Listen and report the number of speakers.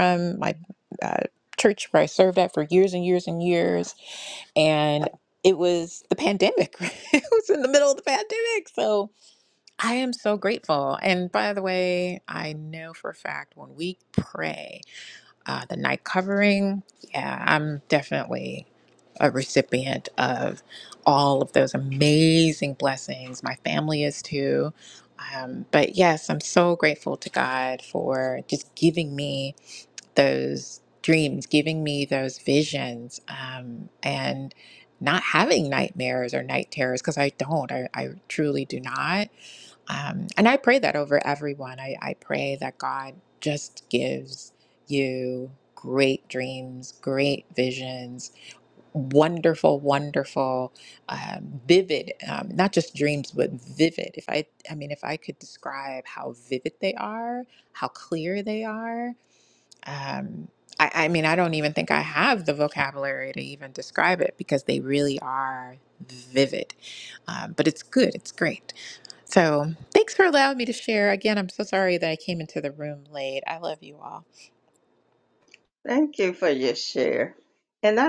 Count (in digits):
2